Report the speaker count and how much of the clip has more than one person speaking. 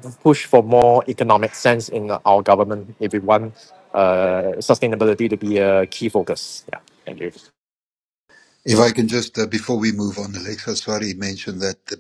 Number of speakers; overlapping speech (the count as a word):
two, no overlap